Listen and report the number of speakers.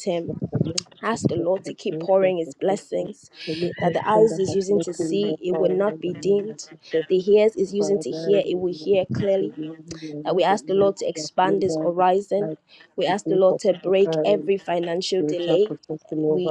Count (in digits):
2